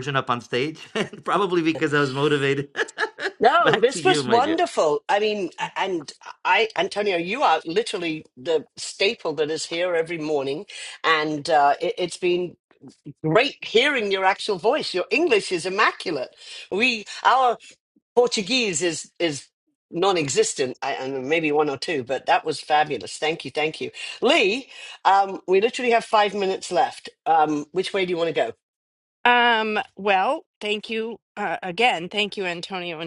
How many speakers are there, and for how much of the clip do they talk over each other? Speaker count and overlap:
three, about 3%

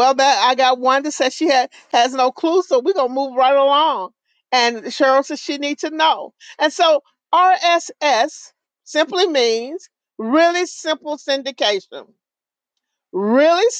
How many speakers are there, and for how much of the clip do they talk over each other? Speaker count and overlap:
one, no overlap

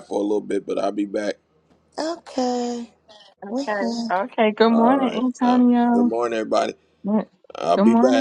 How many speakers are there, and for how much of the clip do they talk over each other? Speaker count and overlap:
three, about 30%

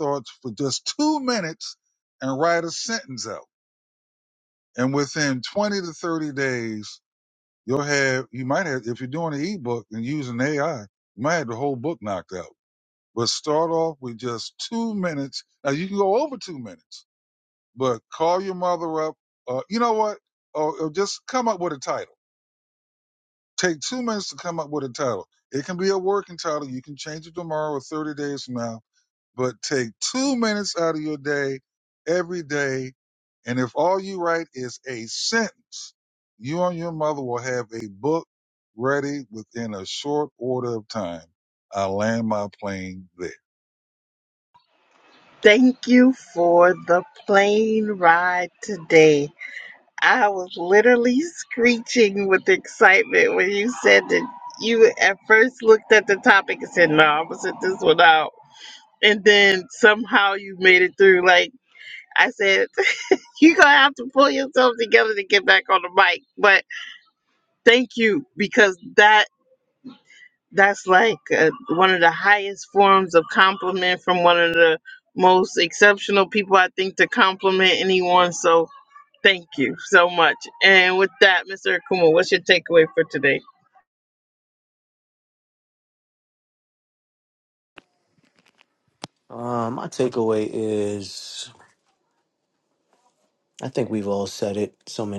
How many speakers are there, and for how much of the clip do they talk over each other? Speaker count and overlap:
three, no overlap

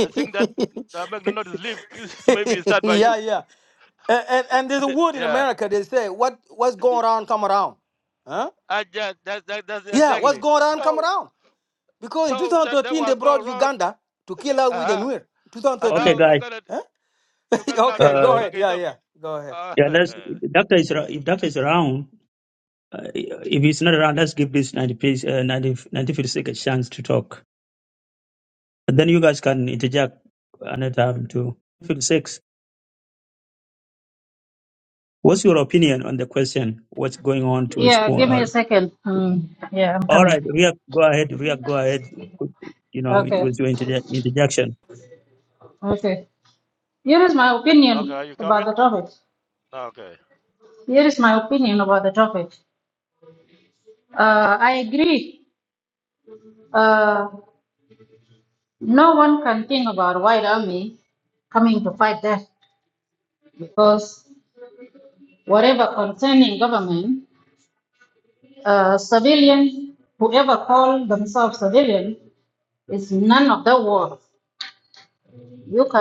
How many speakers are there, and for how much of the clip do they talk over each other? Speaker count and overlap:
four, about 9%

